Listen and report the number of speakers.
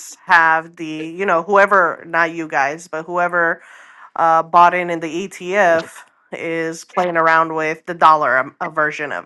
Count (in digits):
1